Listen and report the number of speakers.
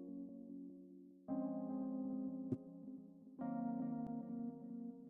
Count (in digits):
0